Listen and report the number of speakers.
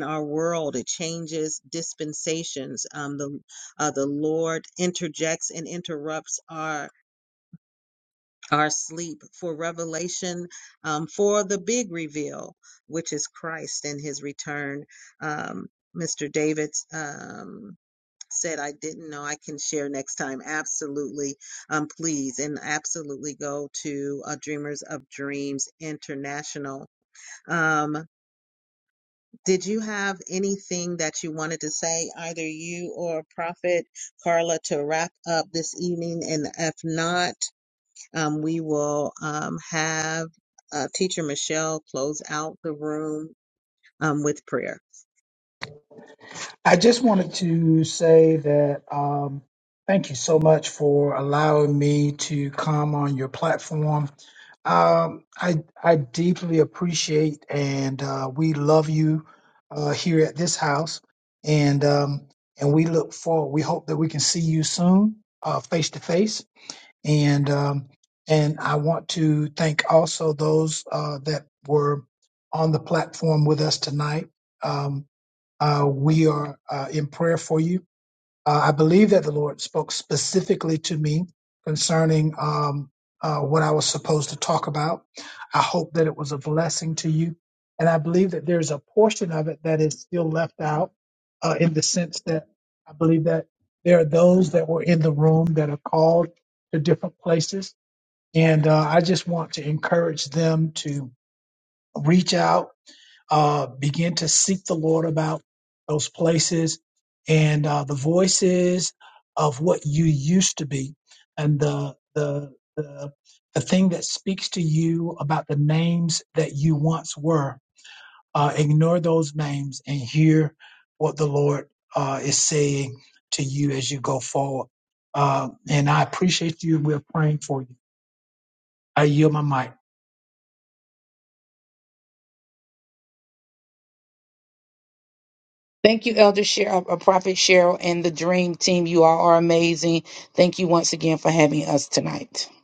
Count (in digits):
3